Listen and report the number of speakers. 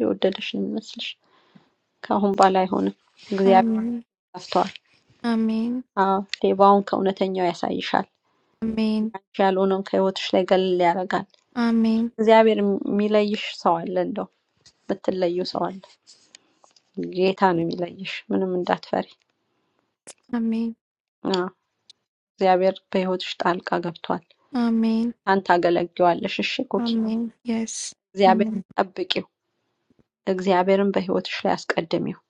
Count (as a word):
two